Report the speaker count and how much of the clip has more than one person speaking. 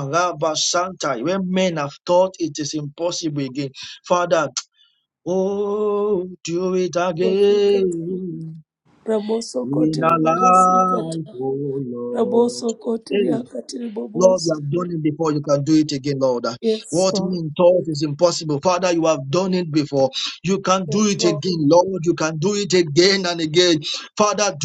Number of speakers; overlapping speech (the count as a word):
two, about 18%